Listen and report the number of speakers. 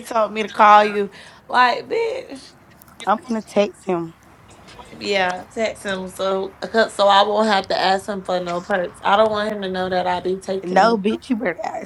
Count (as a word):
two